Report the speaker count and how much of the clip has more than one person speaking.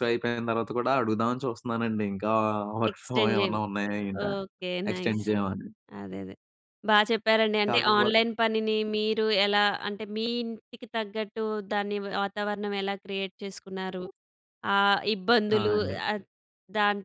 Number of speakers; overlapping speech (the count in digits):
2, about 12%